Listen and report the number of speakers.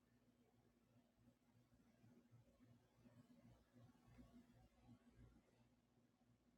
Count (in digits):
0